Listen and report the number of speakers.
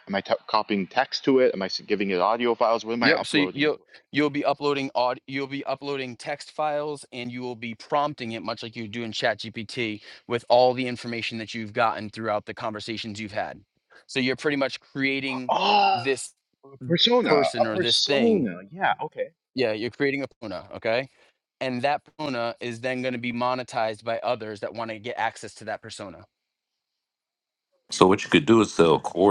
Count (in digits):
3